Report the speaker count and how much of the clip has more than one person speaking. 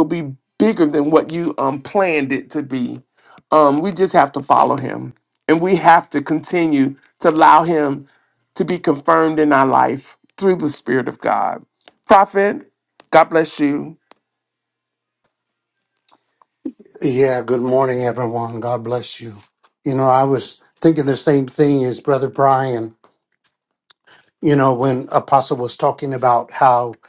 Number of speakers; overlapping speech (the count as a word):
two, no overlap